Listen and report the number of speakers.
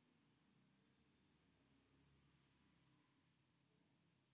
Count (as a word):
zero